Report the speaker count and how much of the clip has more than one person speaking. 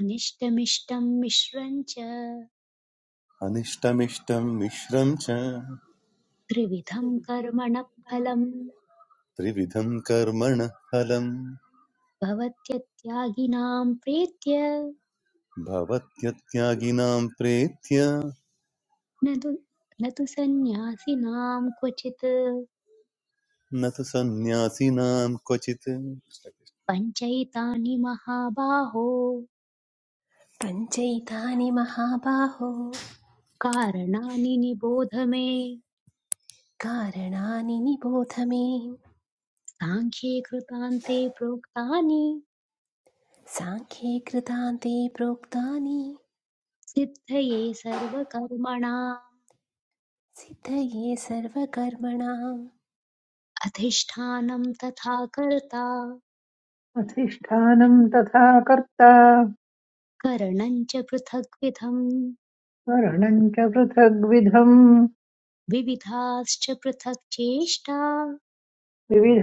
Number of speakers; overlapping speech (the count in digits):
4, no overlap